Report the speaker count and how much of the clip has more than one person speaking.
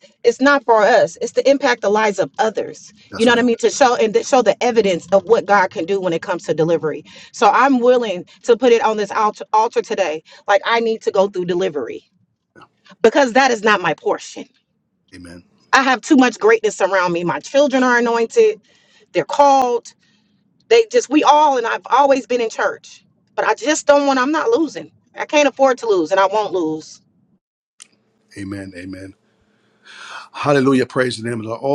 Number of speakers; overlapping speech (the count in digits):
2, about 1%